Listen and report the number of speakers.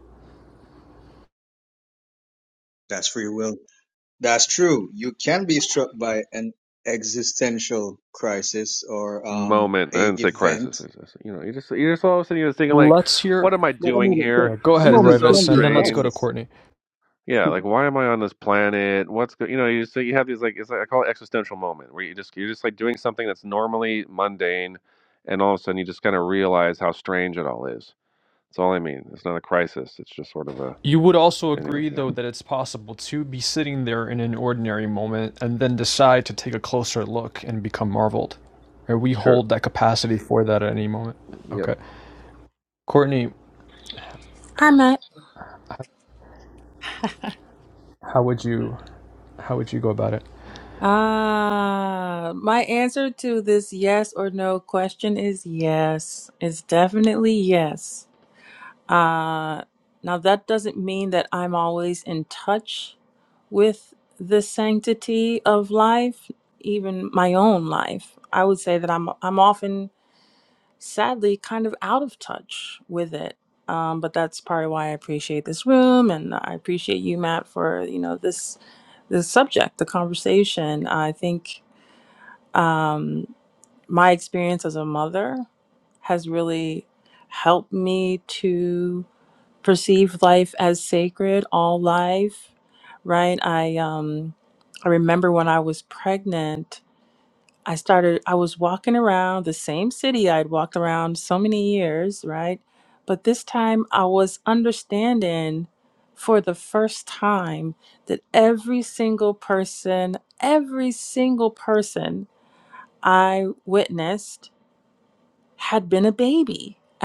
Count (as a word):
four